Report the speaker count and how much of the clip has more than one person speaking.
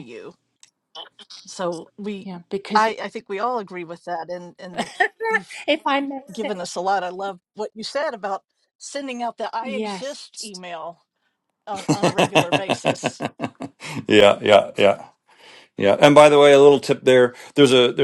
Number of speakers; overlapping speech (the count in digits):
3, about 5%